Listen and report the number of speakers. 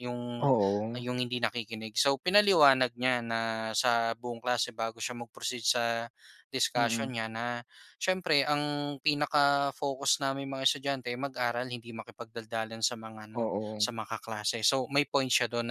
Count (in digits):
2